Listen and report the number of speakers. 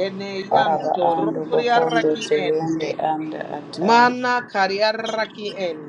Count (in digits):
2